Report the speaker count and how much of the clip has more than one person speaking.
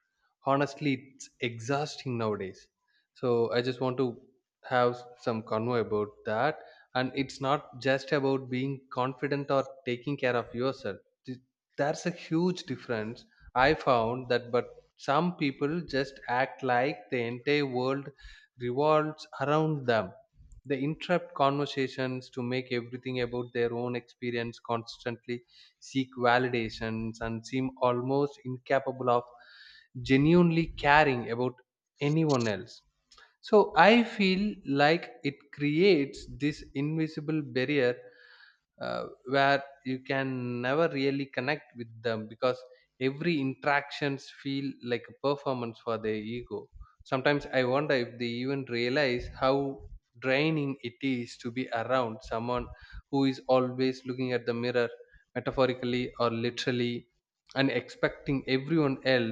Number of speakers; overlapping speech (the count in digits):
1, no overlap